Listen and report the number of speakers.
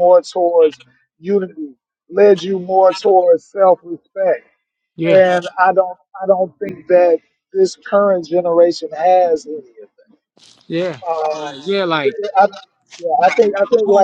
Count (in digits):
2